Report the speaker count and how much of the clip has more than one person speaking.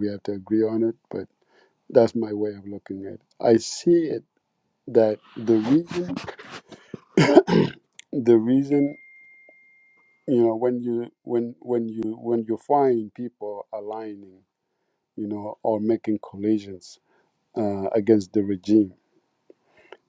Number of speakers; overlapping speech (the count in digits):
1, no overlap